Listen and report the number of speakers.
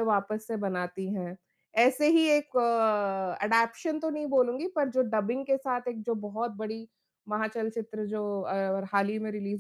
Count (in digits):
1